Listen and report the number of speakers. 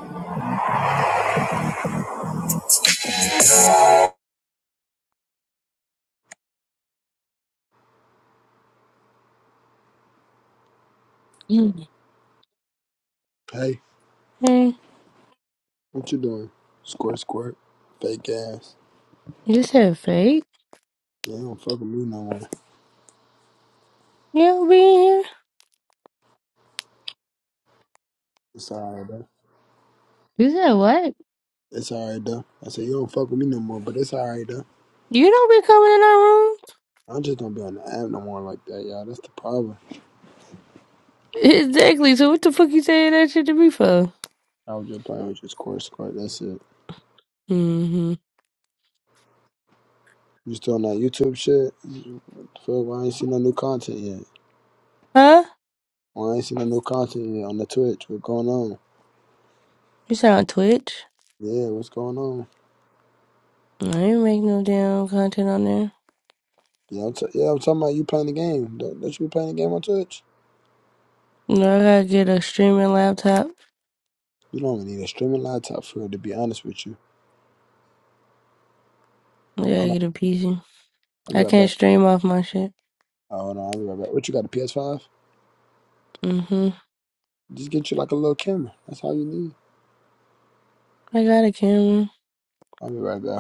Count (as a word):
two